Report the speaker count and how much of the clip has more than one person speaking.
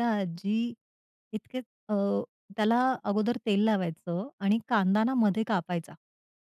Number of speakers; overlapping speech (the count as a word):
one, no overlap